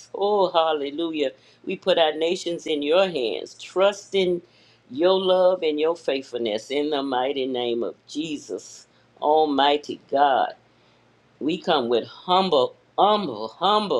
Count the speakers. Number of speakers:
1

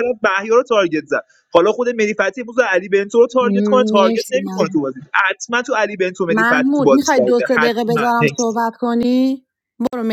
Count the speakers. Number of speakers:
2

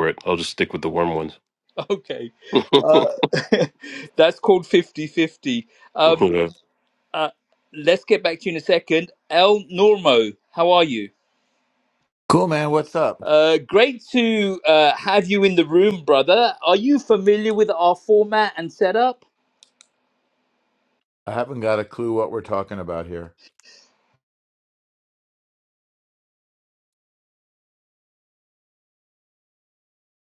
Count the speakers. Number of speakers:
3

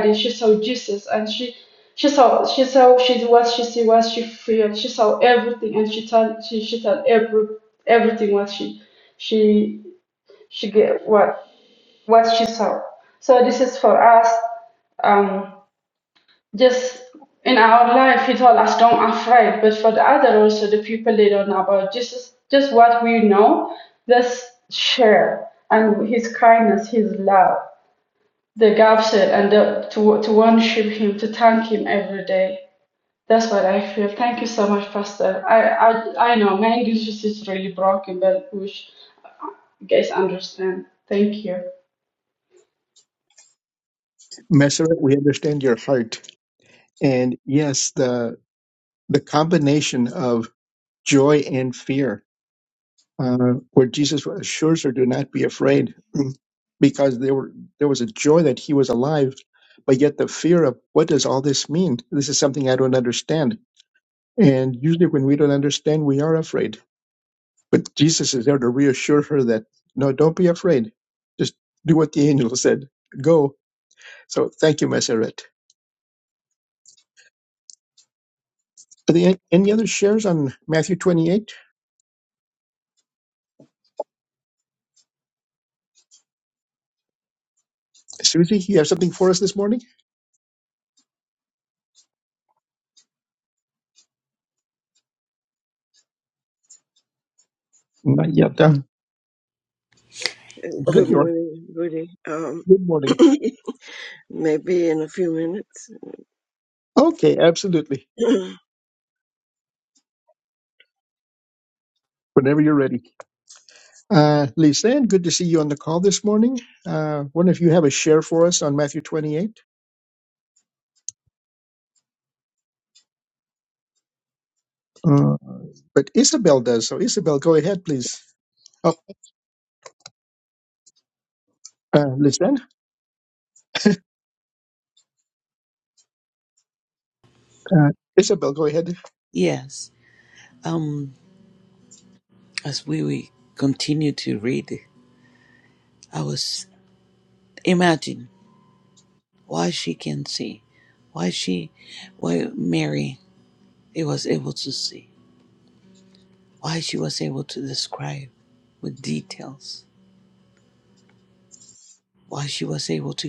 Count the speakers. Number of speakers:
4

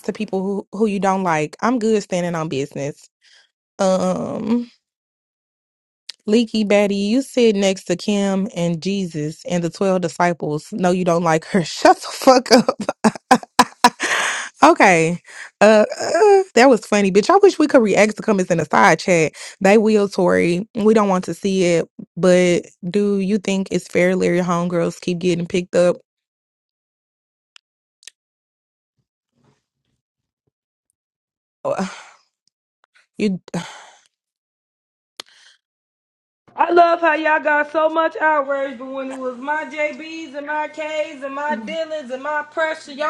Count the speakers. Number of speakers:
2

